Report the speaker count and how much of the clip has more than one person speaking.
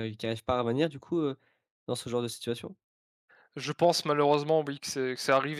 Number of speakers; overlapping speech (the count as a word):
two, no overlap